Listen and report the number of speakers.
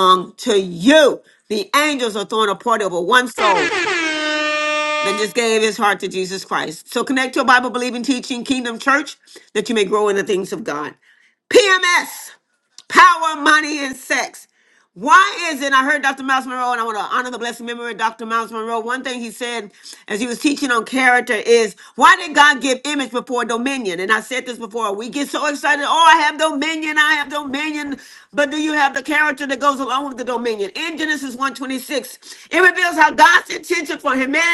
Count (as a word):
one